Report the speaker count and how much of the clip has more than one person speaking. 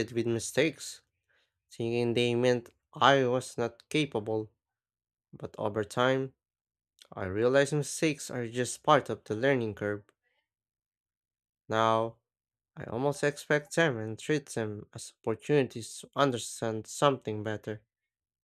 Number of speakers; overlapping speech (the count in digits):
1, no overlap